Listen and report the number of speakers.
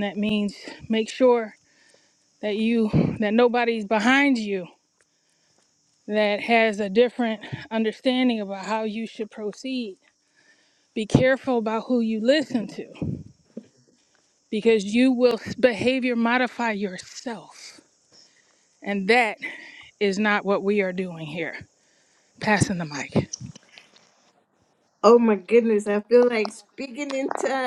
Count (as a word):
two